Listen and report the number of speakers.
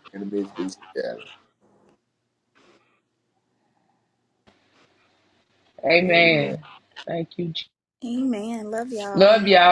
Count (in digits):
3